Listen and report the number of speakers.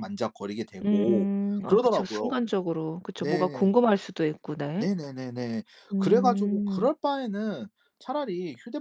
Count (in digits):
2